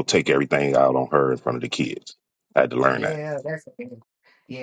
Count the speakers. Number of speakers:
two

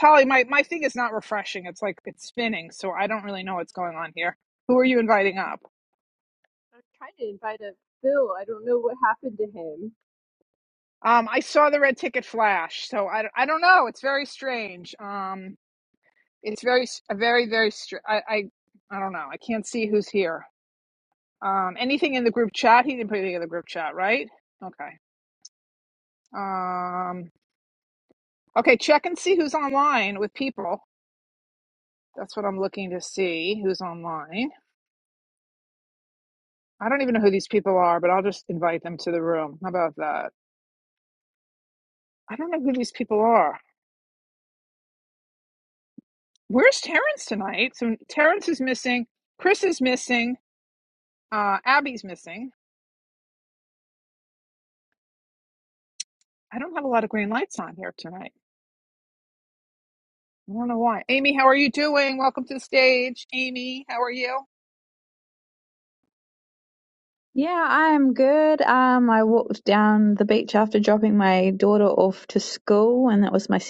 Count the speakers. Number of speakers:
three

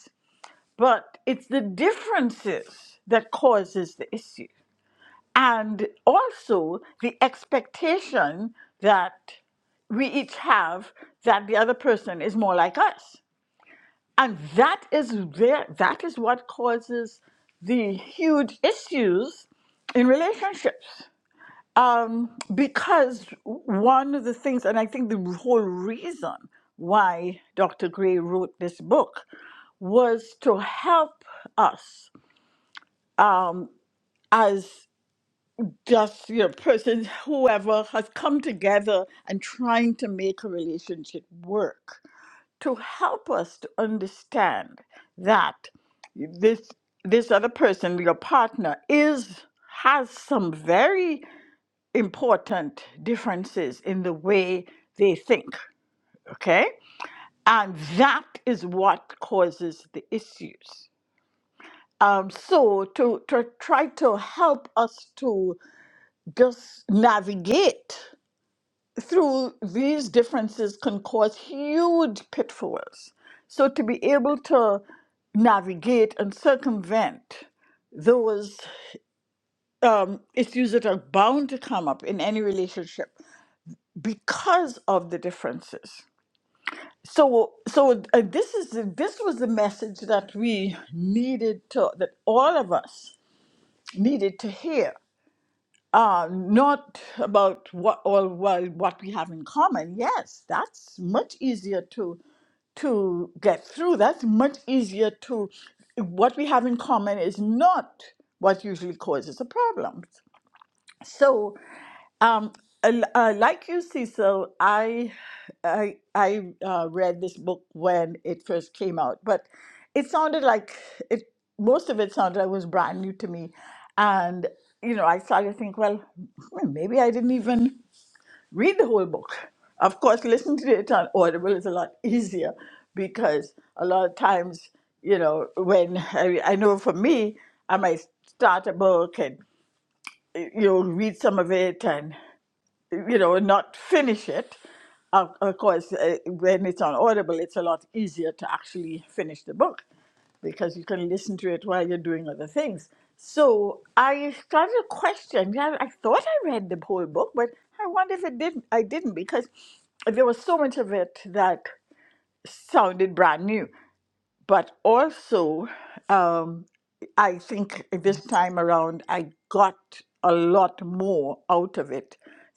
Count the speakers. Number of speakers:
one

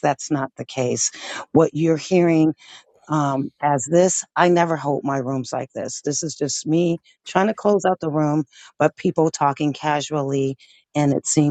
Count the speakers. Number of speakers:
one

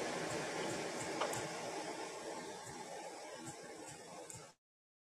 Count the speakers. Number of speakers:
zero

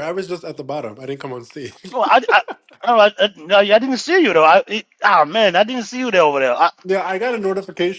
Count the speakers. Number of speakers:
two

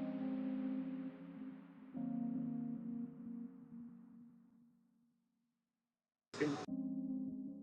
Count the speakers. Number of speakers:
zero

